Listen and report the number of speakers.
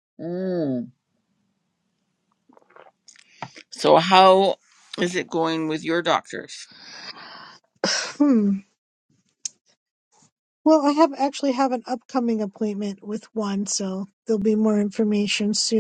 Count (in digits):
2